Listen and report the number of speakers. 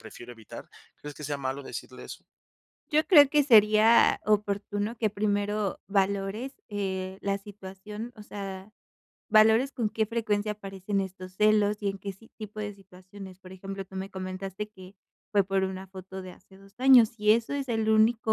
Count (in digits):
2